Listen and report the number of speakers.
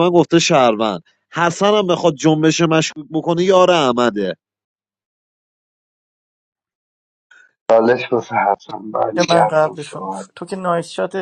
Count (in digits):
3